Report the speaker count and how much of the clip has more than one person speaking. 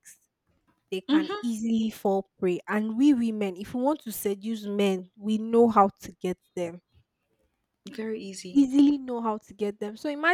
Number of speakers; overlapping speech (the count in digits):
2, about 4%